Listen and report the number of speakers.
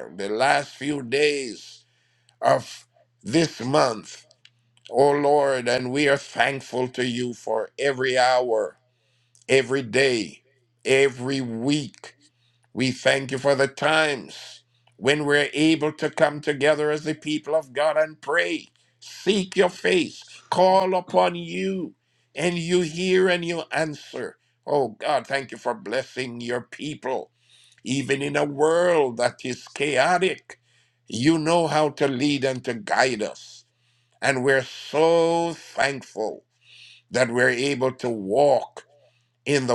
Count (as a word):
one